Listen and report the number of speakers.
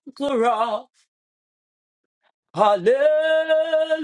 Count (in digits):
1